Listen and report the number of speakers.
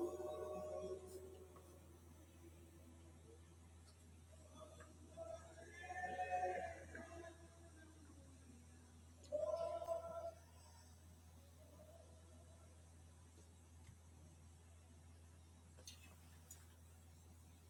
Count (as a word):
zero